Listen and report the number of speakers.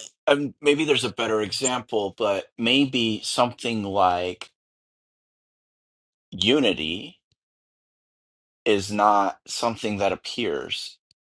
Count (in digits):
1